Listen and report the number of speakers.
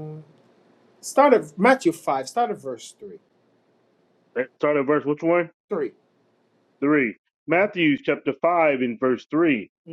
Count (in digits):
2